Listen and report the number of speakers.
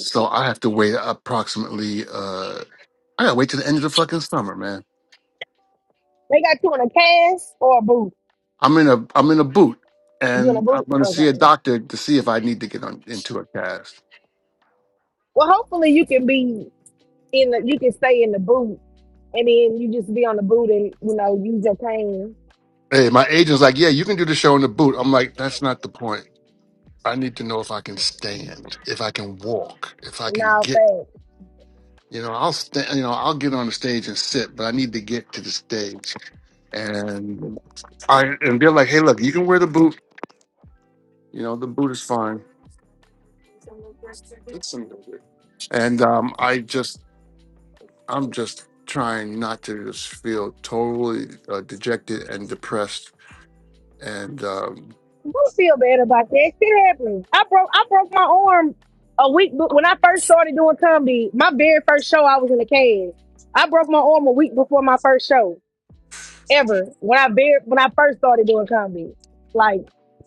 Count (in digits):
2